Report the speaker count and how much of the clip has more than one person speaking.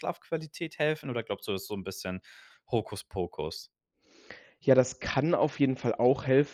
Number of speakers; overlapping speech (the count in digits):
2, no overlap